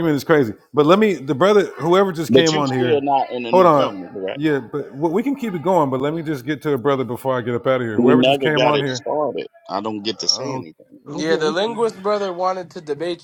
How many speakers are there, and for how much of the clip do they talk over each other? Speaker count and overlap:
three, about 23%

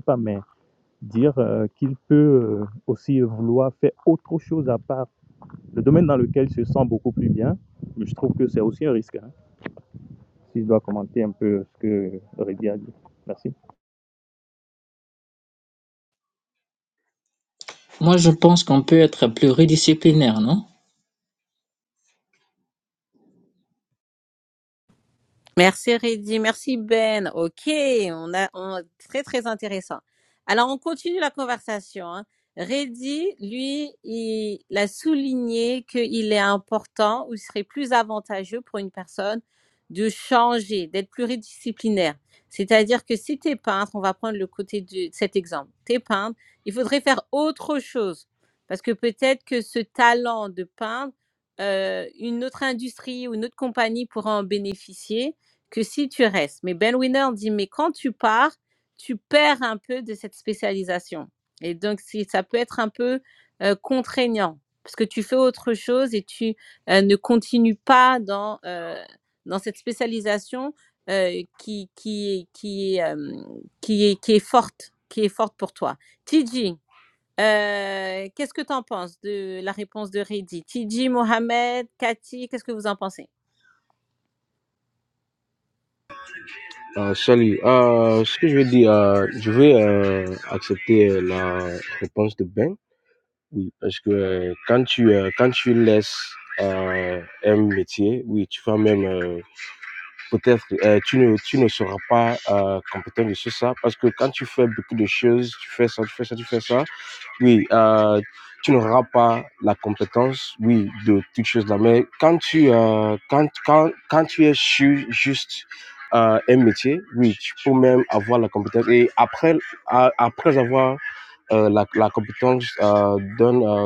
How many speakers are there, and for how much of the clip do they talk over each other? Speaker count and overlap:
four, no overlap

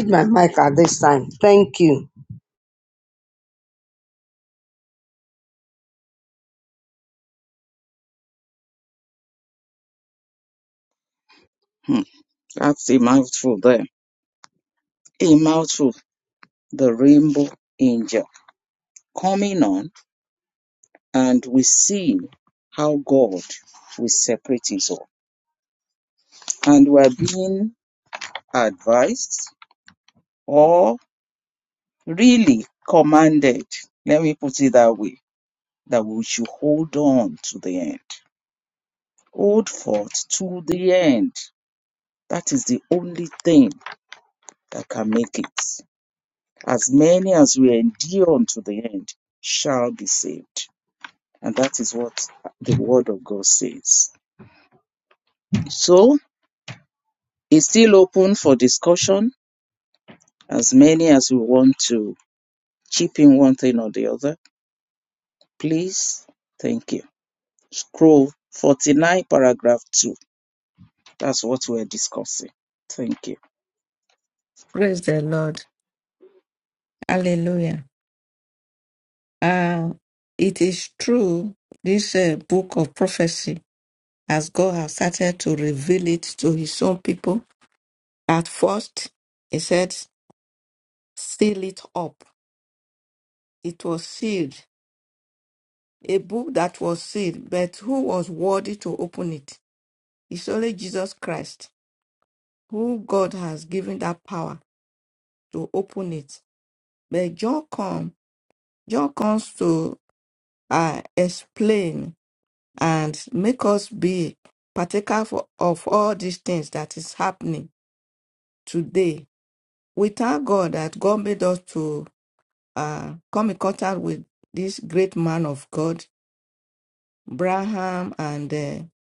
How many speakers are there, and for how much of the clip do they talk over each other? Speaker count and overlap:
three, no overlap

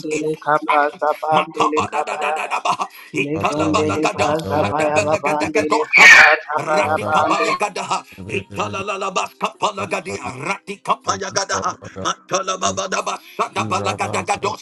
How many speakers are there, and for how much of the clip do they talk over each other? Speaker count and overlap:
three, about 51%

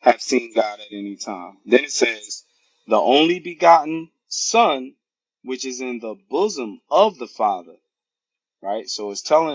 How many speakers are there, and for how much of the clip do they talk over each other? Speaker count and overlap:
one, no overlap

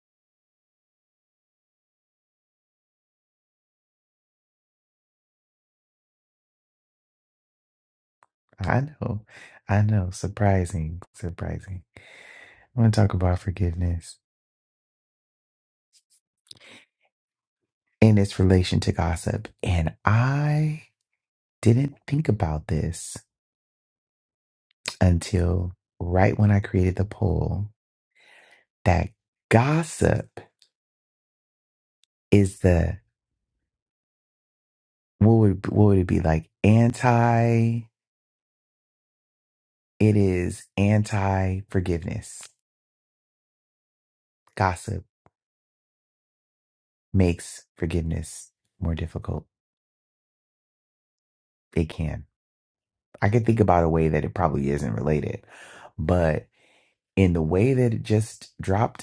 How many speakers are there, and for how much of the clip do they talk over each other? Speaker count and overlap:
one, no overlap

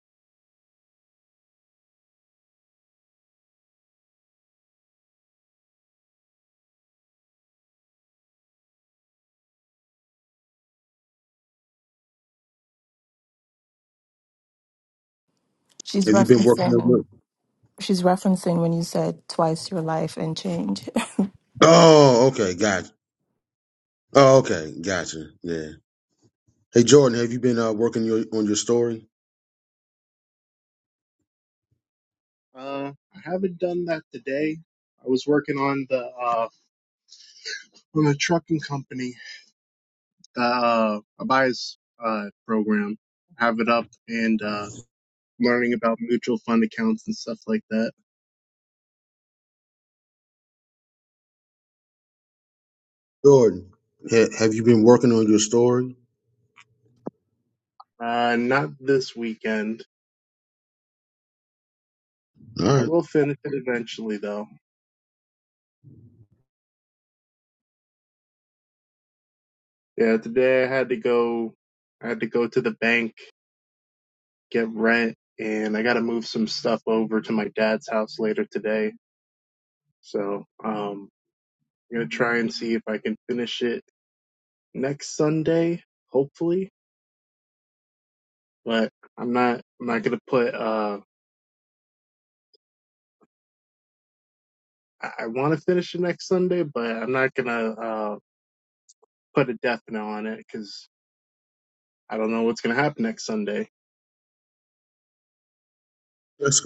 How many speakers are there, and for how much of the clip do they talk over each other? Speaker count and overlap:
three, about 1%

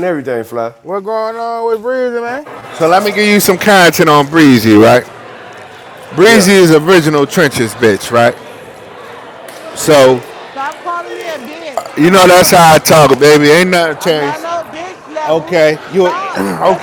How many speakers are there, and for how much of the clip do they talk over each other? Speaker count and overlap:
four, about 20%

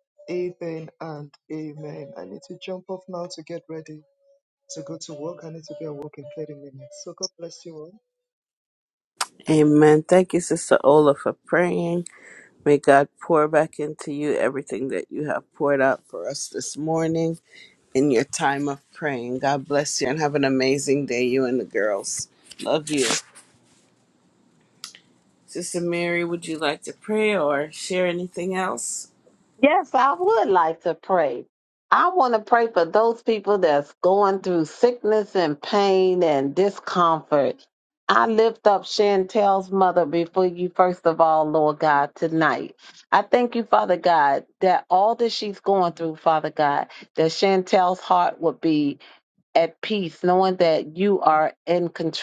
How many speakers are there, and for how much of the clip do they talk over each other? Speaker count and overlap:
three, no overlap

